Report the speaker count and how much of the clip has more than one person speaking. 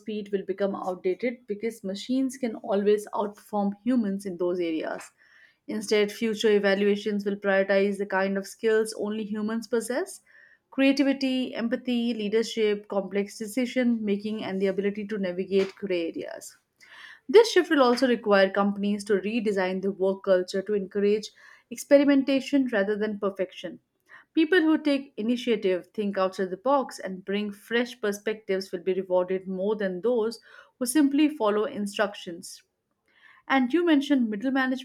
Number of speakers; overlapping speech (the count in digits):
1, no overlap